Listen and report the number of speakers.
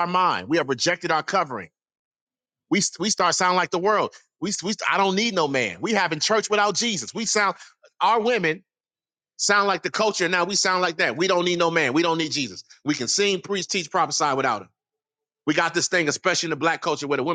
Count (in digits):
1